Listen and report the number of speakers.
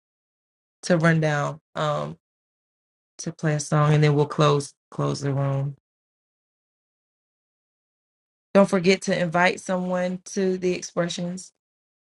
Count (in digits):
1